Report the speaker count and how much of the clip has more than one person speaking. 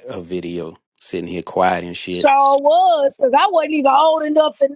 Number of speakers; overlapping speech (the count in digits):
2, about 3%